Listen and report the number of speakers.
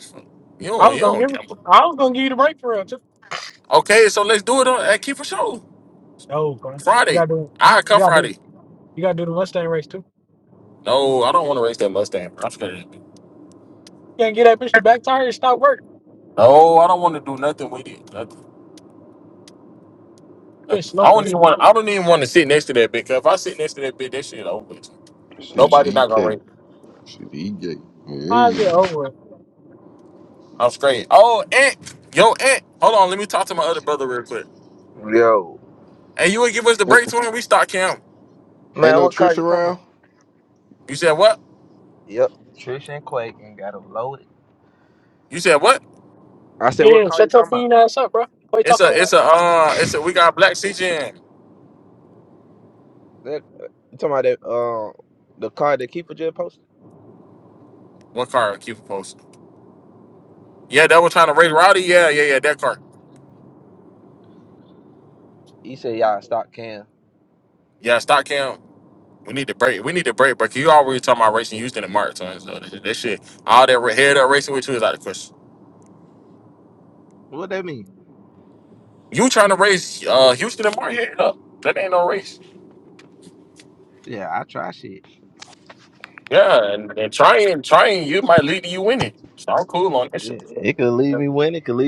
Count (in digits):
4